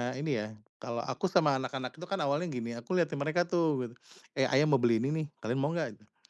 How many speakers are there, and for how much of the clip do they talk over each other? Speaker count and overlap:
1, no overlap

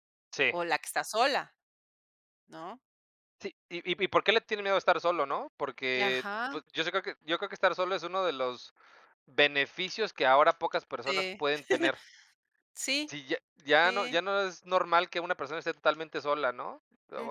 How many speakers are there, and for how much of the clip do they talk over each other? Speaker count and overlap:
2, about 8%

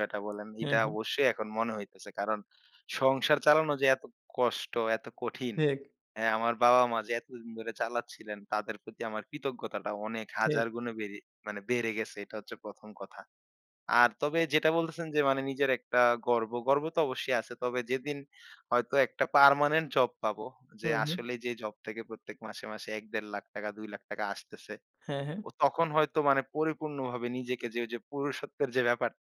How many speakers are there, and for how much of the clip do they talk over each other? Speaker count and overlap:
2, about 3%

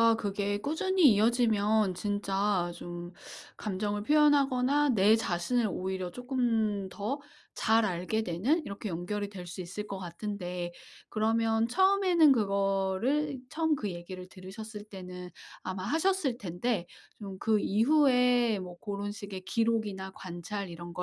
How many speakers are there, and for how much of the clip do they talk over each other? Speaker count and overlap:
1, no overlap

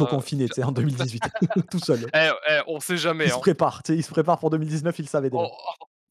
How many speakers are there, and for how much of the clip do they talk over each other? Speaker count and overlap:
2, about 24%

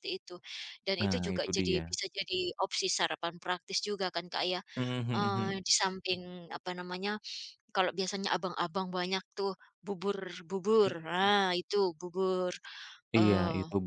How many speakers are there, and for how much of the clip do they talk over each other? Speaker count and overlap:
2, about 14%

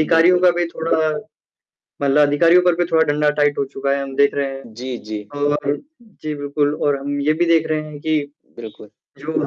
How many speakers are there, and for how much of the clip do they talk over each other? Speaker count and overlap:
2, about 5%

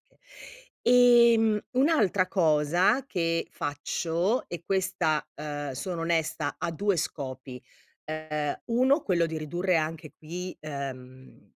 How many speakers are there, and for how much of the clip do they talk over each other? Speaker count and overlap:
1, no overlap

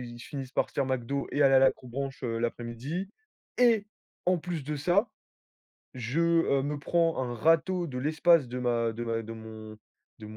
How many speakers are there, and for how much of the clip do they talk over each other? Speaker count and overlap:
1, no overlap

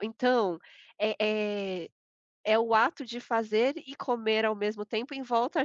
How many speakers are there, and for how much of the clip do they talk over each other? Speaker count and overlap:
1, no overlap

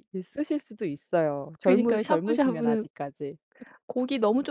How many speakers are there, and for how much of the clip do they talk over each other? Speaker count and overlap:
2, about 27%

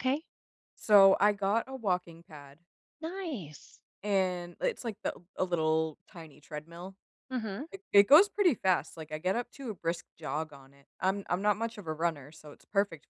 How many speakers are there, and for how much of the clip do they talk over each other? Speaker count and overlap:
2, no overlap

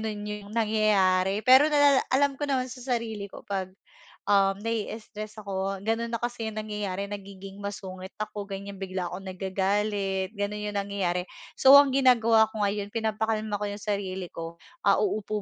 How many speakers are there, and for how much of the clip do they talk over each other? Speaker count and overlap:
1, no overlap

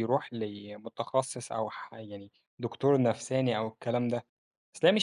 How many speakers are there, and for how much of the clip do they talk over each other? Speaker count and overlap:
1, no overlap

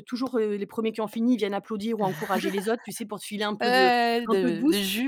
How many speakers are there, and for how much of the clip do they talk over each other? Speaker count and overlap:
2, about 17%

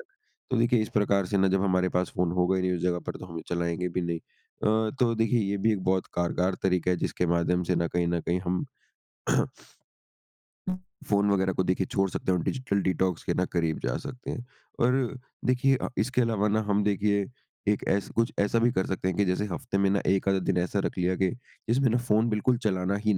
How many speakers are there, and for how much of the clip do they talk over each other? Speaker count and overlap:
1, no overlap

